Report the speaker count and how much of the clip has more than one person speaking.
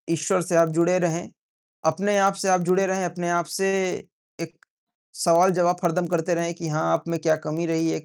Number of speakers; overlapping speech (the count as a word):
one, no overlap